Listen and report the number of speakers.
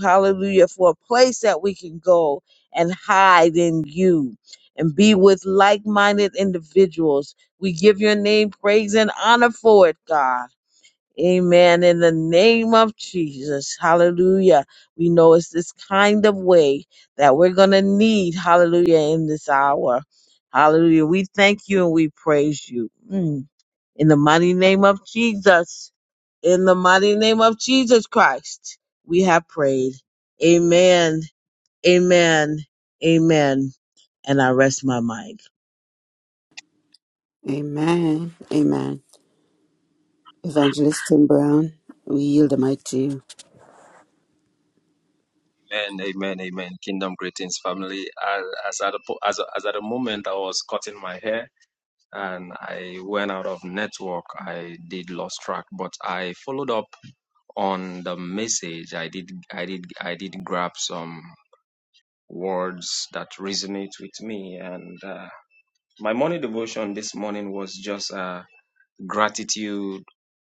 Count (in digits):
3